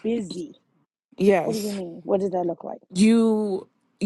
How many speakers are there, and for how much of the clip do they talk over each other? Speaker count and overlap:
2, about 8%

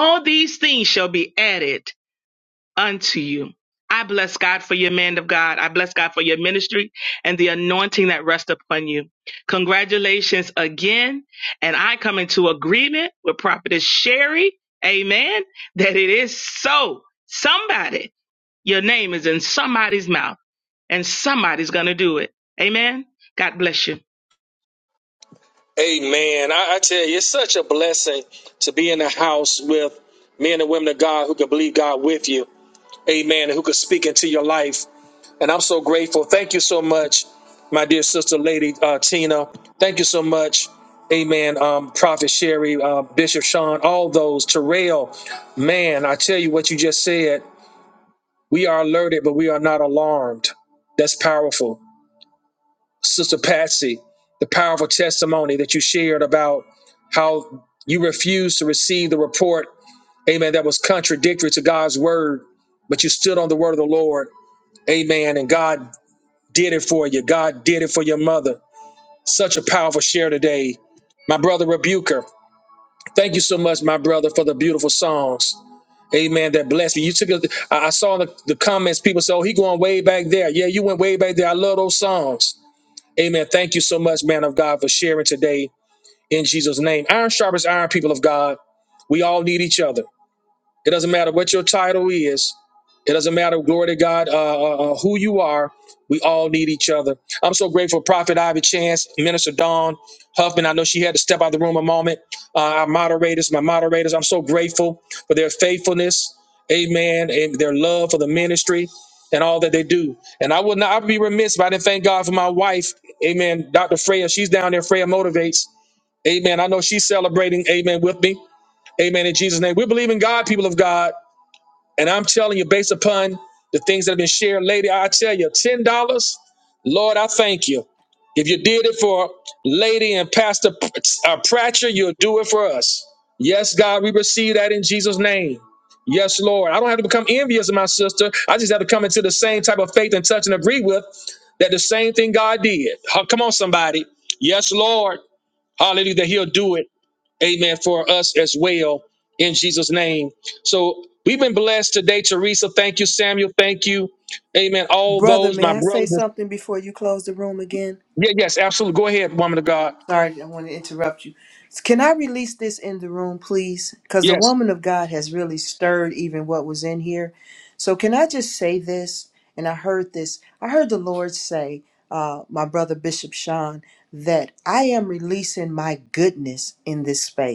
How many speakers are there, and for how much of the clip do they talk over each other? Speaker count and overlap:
3, about 1%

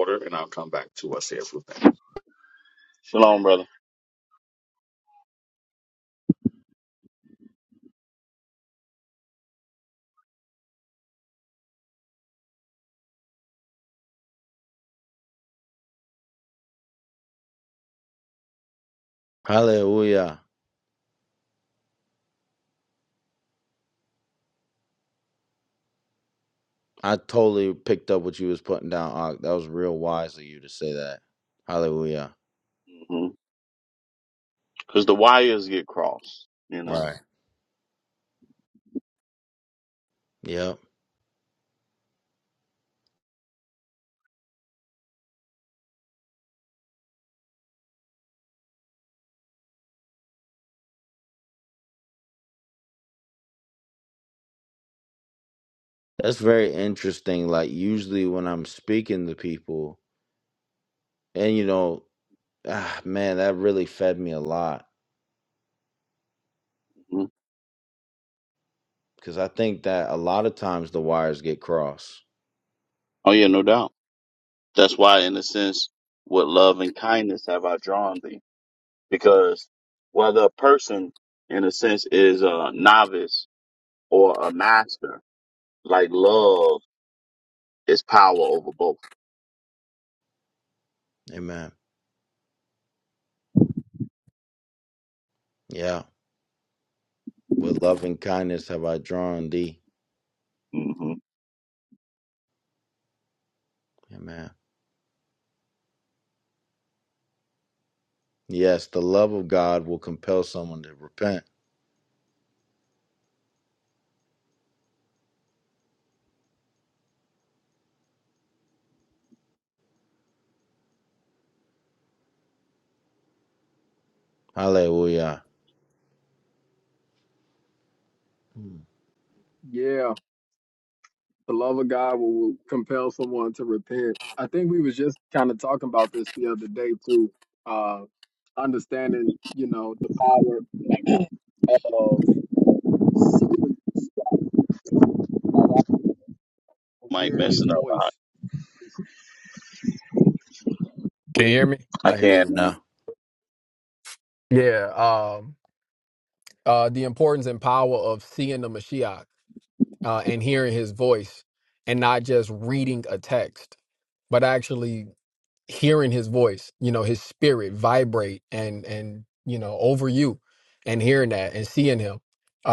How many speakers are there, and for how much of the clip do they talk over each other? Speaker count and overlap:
4, about 1%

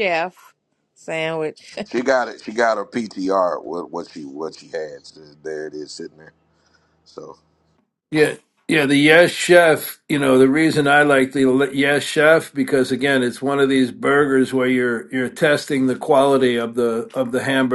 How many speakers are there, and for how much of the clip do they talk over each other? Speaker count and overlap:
3, no overlap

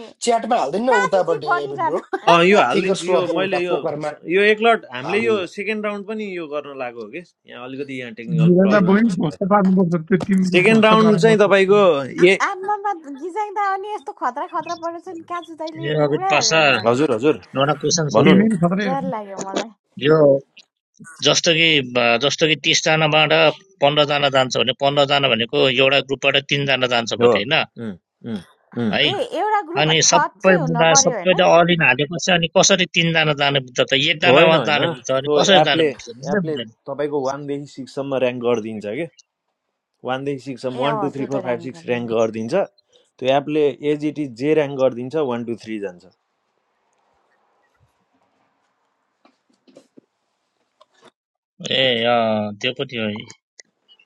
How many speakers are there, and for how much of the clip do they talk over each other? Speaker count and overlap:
5, about 20%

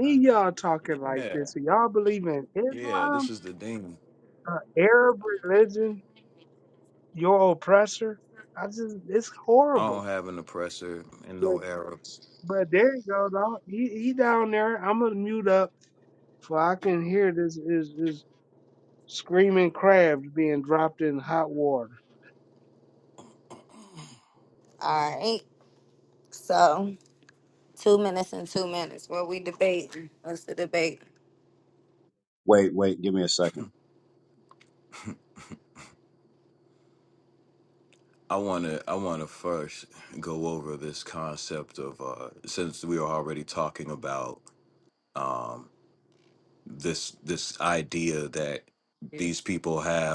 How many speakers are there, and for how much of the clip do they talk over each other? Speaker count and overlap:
4, about 3%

